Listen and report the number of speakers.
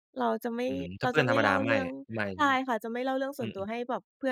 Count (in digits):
2